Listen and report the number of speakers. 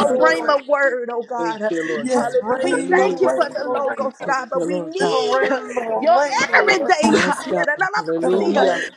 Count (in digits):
3